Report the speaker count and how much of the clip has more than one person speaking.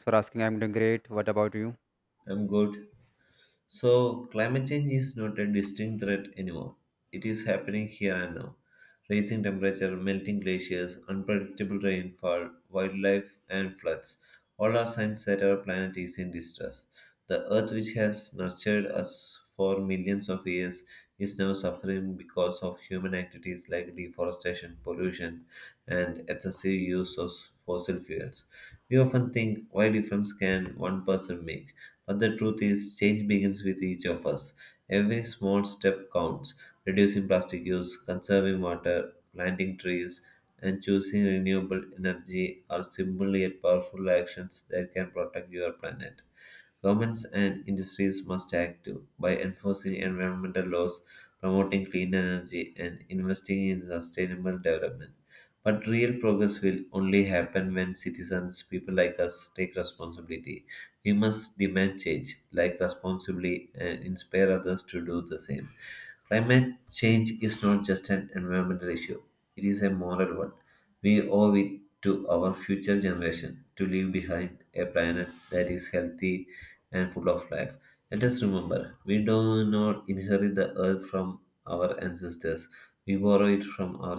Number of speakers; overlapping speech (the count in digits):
2, no overlap